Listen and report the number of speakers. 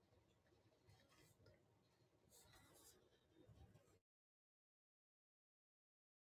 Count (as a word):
zero